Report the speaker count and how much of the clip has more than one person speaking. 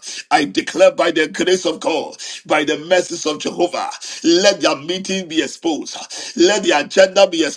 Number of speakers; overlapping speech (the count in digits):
1, no overlap